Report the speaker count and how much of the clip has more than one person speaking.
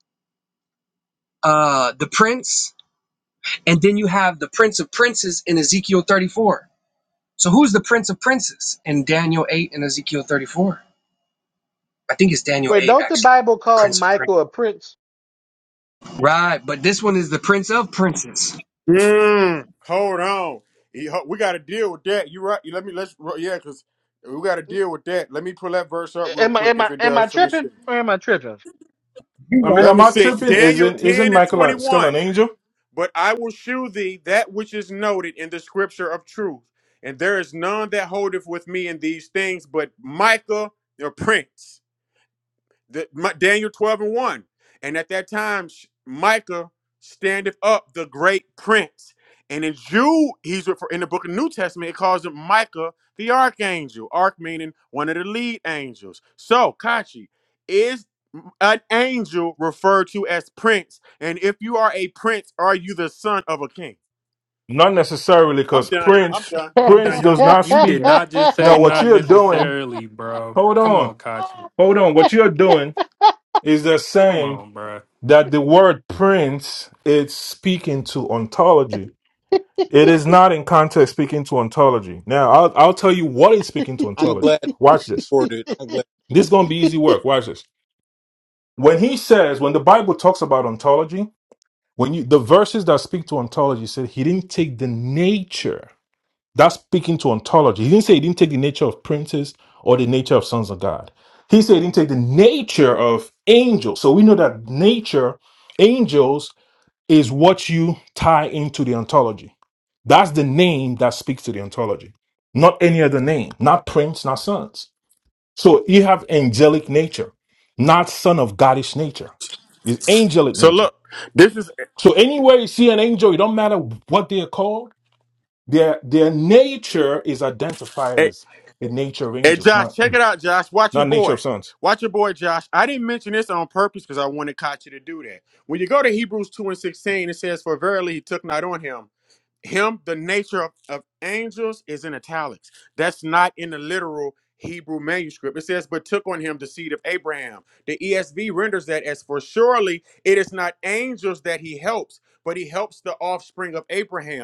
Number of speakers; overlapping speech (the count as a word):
six, about 7%